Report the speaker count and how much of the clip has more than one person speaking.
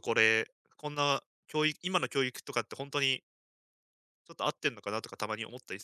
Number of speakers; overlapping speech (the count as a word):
one, no overlap